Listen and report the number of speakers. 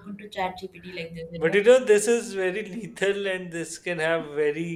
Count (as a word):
two